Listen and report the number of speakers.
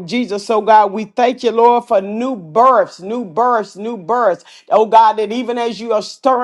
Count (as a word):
one